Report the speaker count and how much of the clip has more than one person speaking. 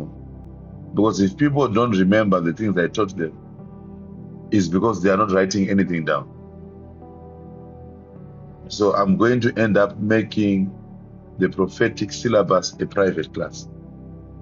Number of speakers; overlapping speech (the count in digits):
1, no overlap